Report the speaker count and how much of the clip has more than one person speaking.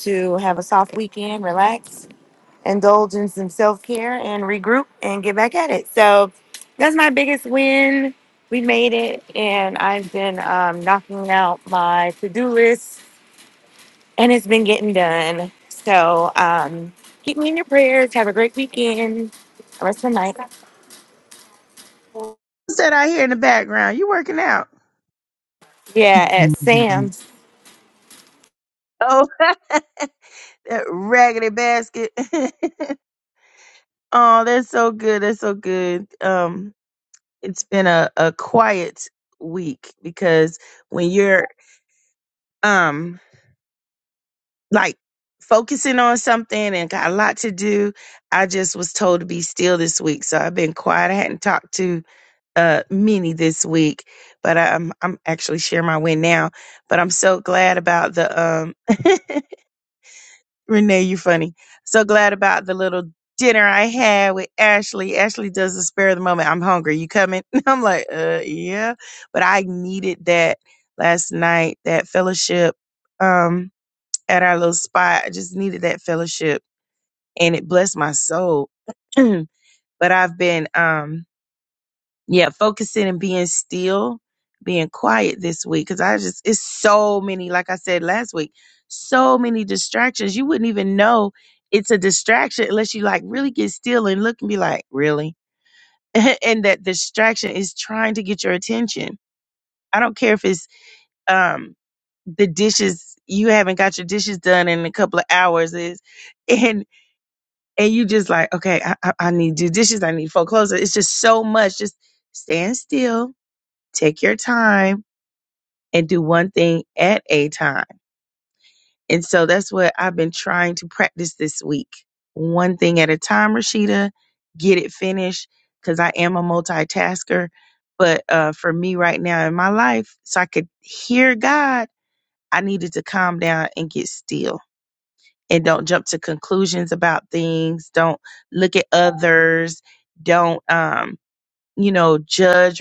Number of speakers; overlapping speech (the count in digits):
2, no overlap